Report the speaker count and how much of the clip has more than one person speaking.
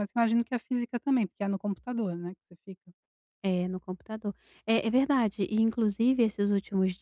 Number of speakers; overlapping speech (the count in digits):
2, no overlap